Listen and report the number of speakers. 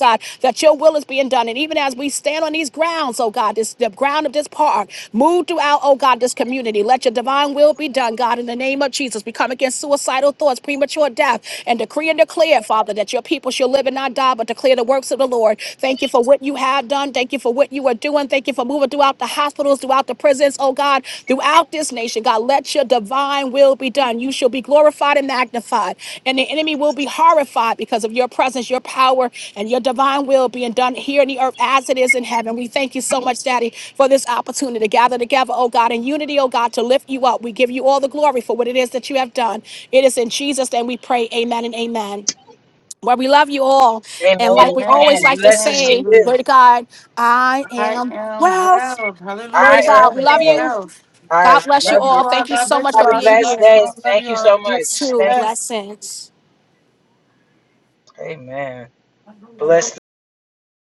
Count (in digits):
3